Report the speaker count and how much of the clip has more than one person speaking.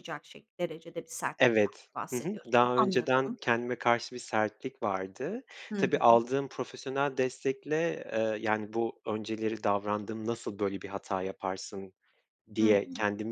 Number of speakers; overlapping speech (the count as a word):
two, about 20%